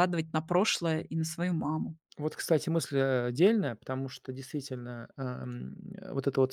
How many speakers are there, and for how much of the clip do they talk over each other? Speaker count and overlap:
two, no overlap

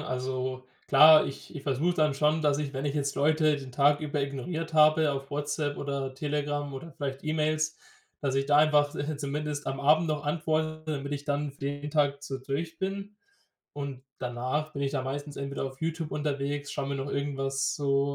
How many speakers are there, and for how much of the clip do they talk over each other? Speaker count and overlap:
one, no overlap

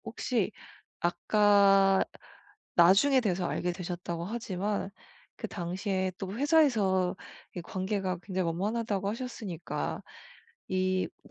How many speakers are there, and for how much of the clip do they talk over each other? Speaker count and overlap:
one, no overlap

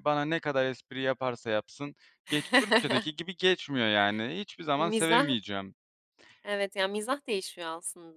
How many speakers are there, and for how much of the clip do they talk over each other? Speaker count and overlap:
two, about 7%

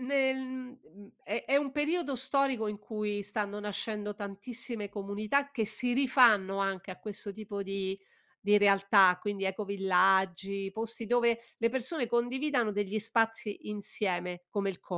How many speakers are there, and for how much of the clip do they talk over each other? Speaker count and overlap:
one, no overlap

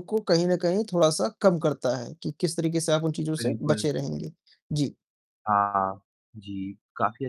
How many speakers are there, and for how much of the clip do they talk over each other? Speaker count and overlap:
two, about 7%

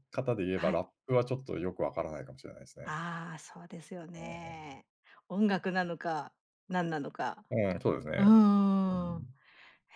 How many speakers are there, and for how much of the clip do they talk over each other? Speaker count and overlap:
two, about 8%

